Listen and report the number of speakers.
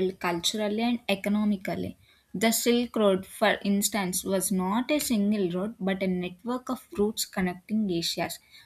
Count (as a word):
one